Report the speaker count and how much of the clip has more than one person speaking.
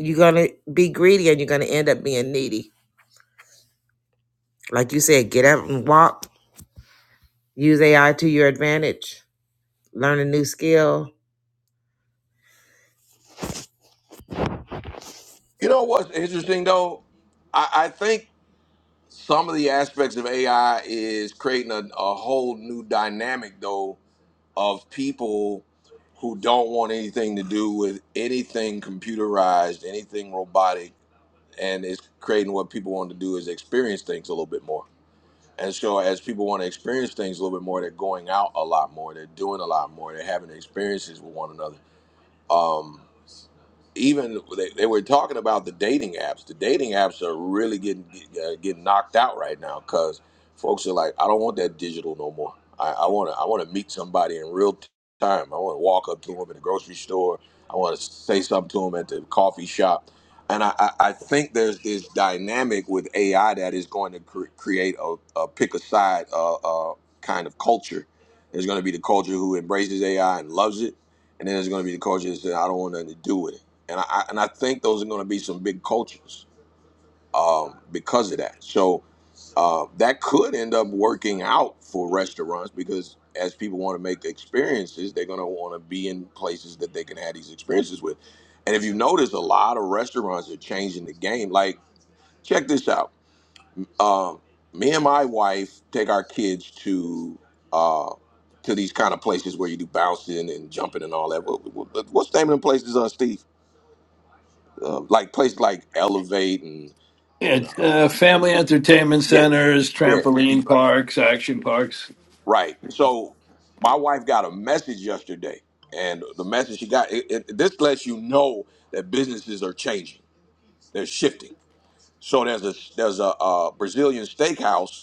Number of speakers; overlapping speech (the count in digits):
3, about 1%